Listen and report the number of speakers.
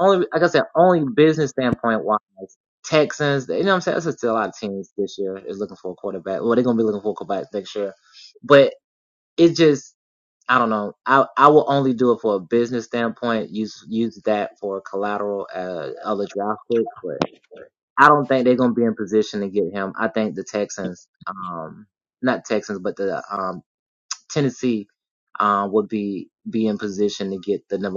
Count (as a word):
one